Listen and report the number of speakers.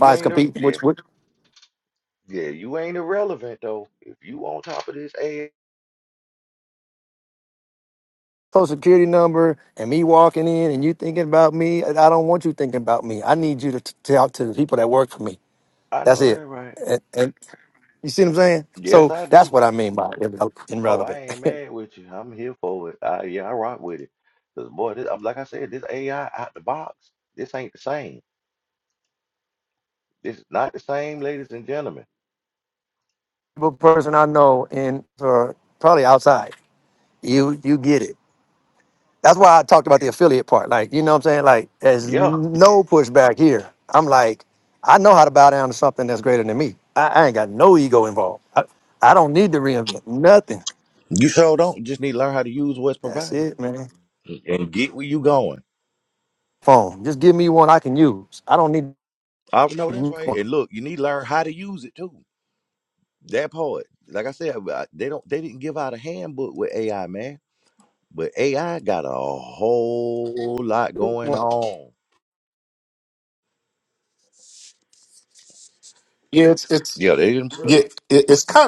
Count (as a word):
three